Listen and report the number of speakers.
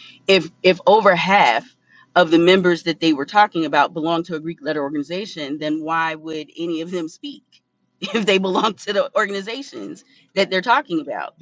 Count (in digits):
1